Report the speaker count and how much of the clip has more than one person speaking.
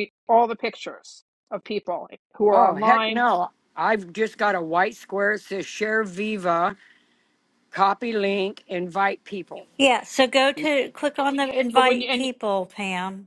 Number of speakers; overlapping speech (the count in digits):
3, about 9%